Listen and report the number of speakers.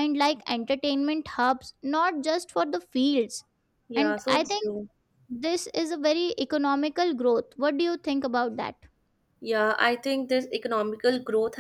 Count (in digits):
2